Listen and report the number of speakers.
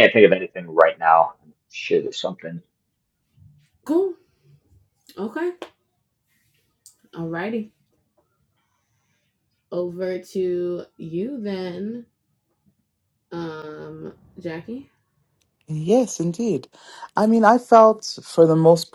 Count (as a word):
three